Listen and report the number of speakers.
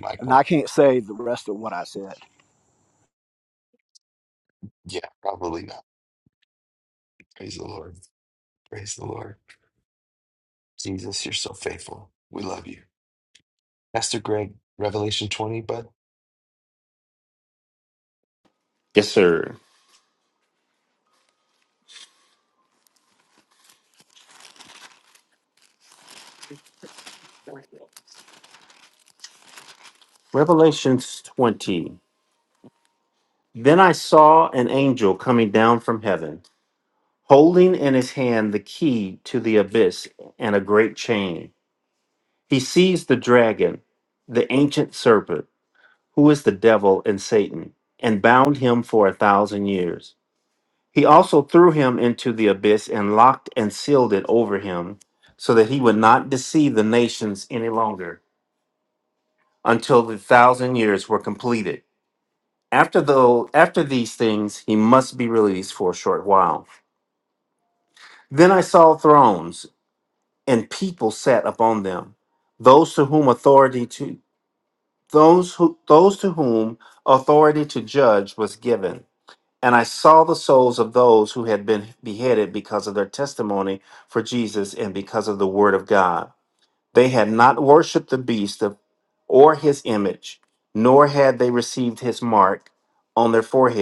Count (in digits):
3